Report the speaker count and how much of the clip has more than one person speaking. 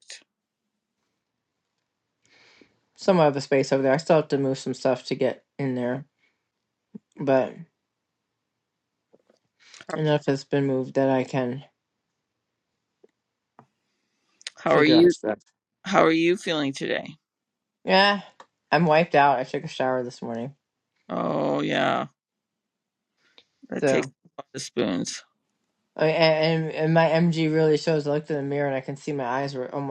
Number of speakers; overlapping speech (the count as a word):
two, about 2%